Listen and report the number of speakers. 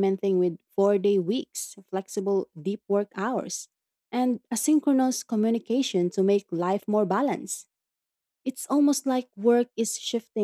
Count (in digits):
1